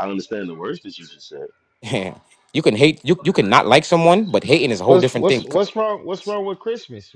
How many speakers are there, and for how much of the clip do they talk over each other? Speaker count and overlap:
3, about 9%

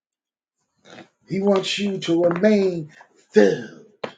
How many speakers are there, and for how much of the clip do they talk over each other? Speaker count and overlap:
1, no overlap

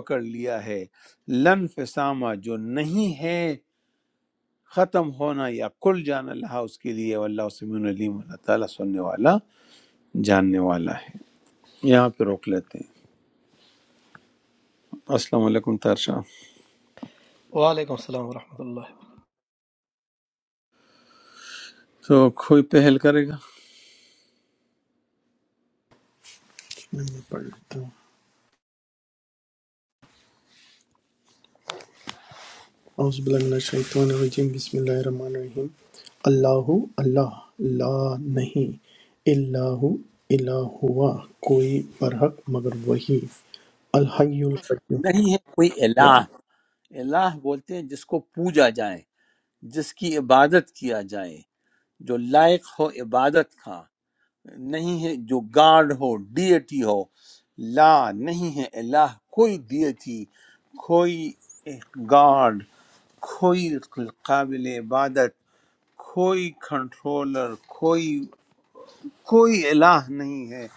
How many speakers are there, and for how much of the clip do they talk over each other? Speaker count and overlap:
3, under 1%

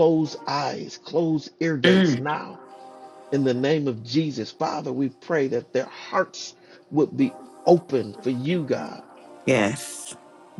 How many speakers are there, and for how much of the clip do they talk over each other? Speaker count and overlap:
2, about 4%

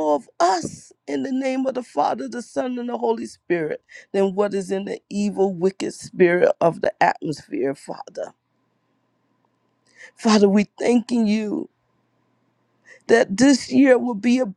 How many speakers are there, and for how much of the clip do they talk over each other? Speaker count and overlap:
1, no overlap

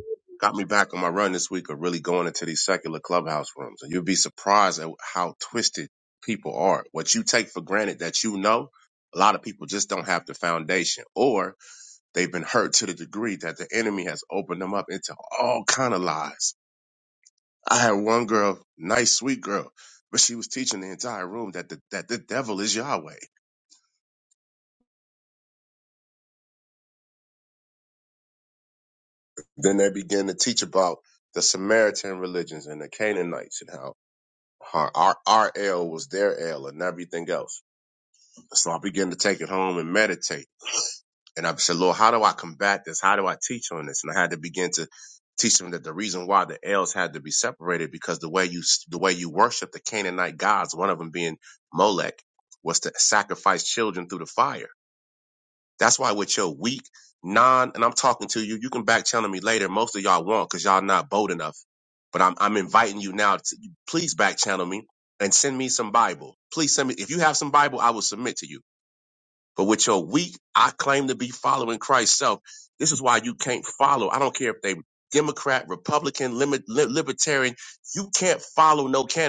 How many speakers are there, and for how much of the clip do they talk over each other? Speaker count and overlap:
1, no overlap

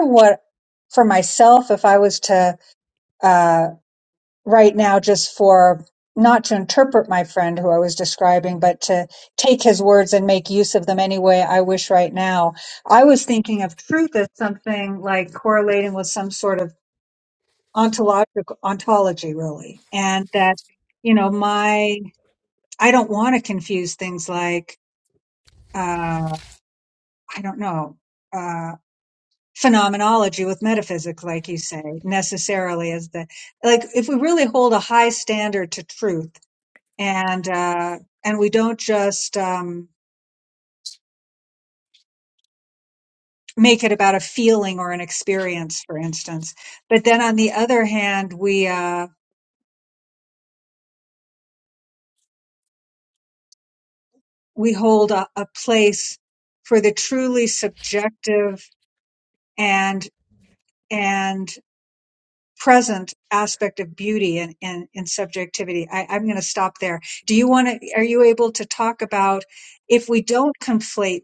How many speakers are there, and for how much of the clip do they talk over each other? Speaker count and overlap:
1, no overlap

